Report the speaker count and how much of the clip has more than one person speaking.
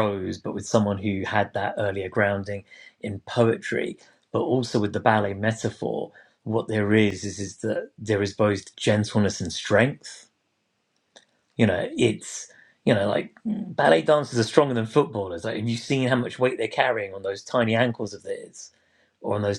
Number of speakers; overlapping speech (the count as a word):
one, no overlap